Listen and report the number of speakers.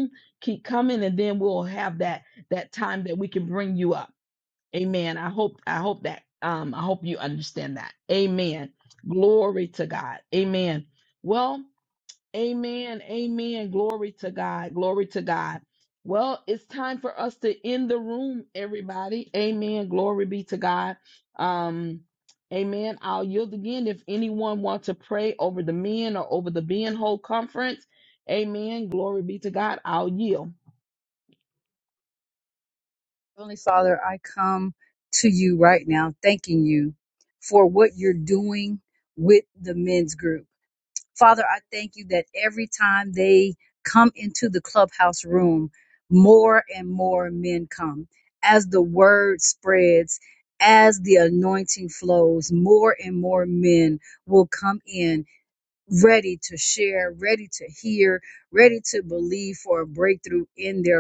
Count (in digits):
2